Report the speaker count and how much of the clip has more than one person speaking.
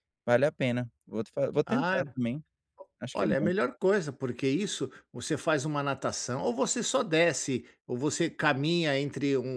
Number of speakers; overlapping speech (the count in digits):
2, about 8%